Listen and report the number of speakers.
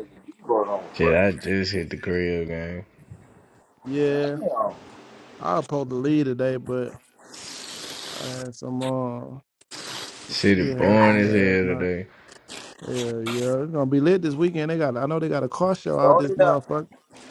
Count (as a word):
three